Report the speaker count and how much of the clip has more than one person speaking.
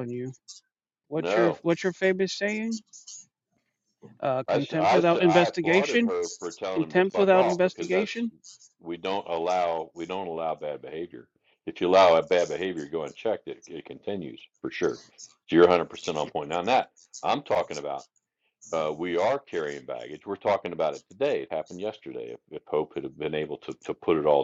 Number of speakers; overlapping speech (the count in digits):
2, about 14%